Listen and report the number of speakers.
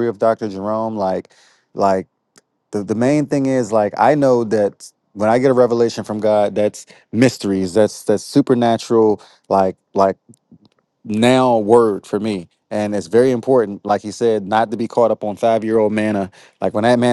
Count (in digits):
1